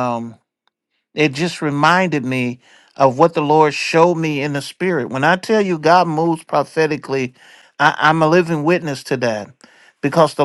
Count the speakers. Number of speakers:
1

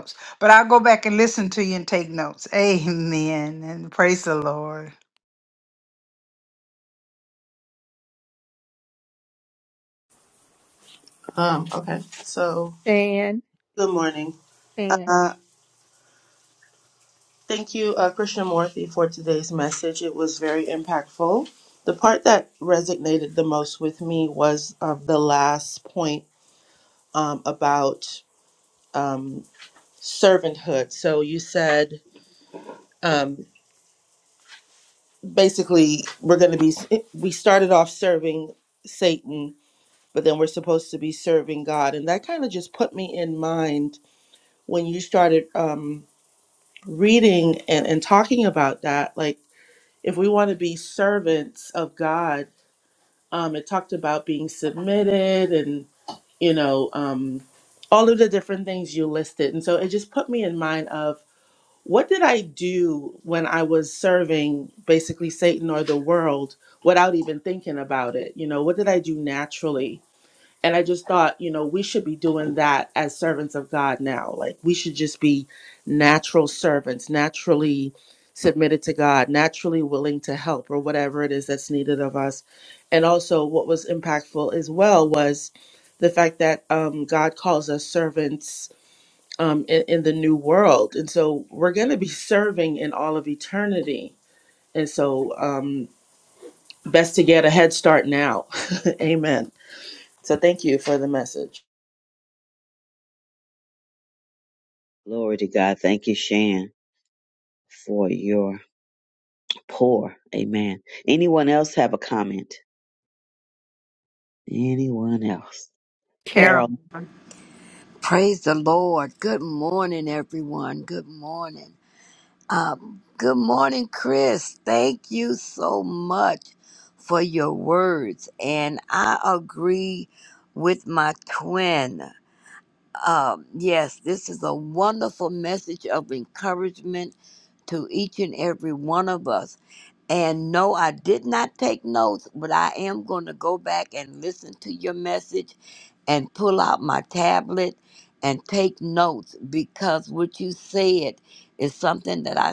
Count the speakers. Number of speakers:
5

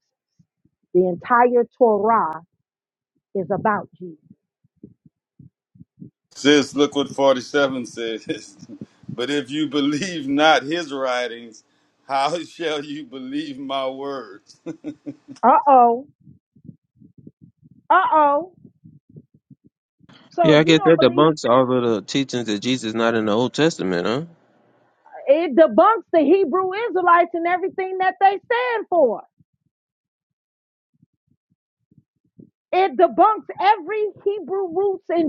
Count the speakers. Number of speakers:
3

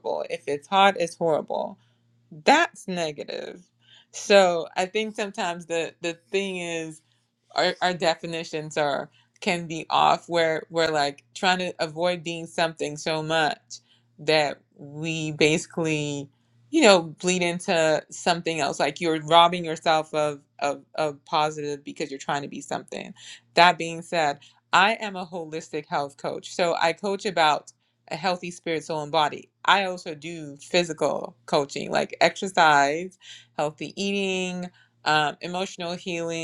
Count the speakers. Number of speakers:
1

